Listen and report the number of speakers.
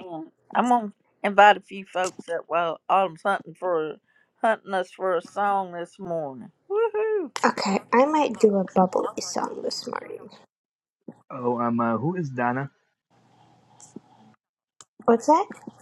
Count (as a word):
three